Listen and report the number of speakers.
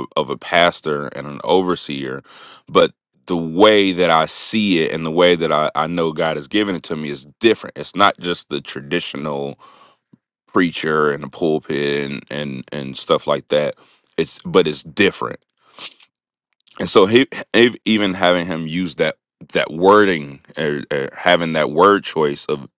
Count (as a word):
one